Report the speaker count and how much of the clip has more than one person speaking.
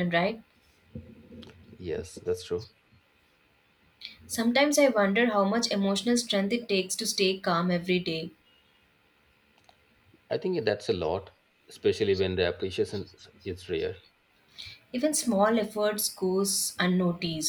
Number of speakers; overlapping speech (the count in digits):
2, no overlap